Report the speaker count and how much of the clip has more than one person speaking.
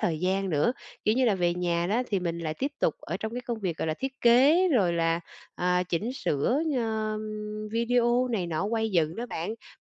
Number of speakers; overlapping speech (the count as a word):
one, no overlap